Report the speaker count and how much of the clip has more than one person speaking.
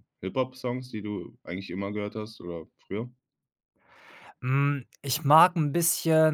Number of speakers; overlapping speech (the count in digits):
2, no overlap